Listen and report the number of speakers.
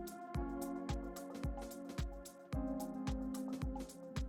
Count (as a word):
zero